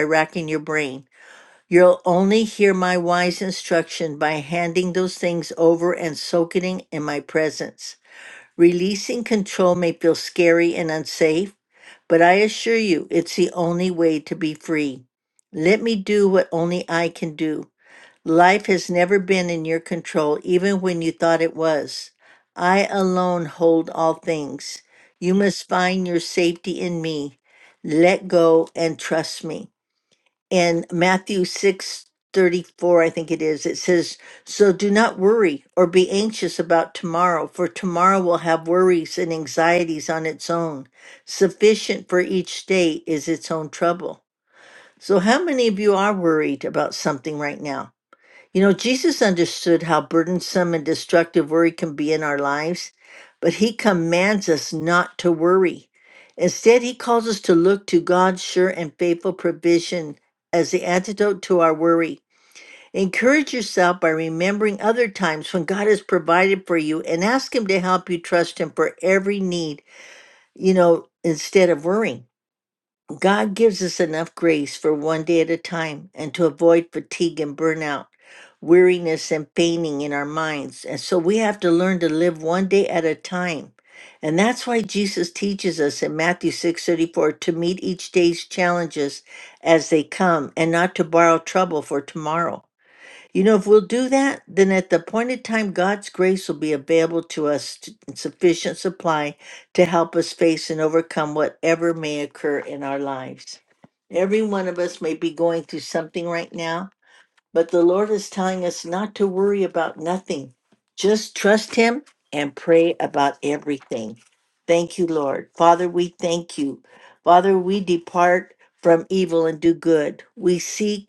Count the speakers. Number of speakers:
1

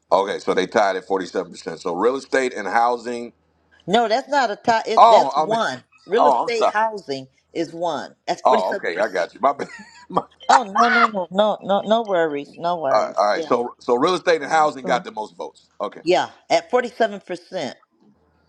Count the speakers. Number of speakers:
2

